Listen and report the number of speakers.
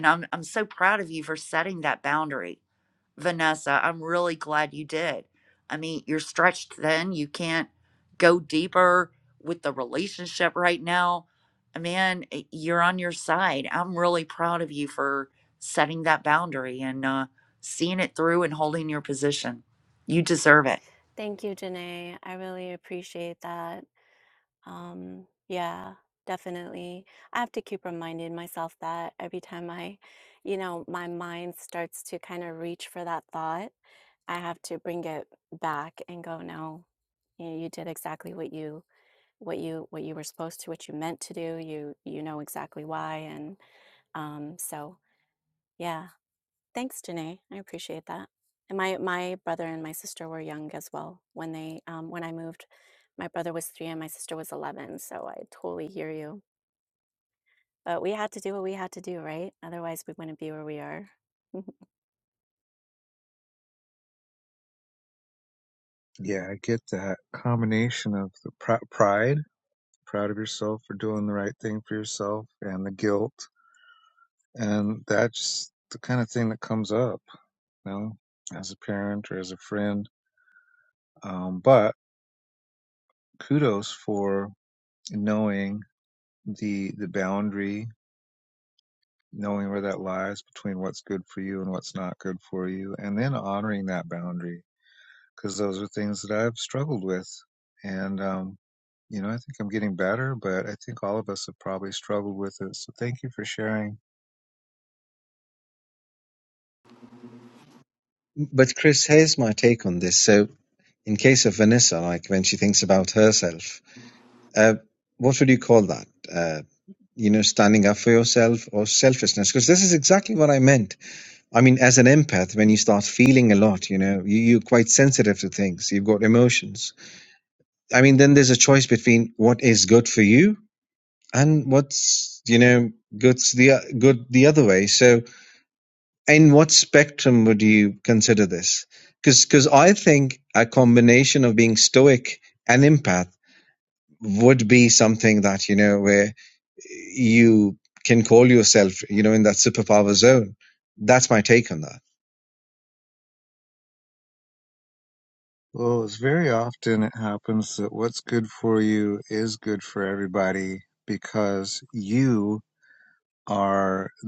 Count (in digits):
4